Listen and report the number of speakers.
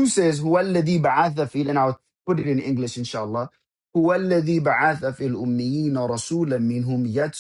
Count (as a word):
one